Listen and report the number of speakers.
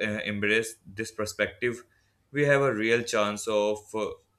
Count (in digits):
1